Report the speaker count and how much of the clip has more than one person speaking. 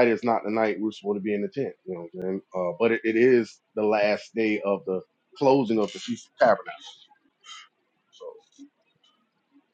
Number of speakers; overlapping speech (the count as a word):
one, no overlap